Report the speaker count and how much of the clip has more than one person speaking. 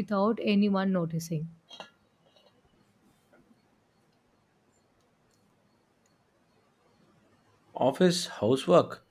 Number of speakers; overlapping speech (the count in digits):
2, no overlap